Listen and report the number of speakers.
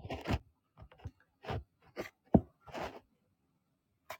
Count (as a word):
zero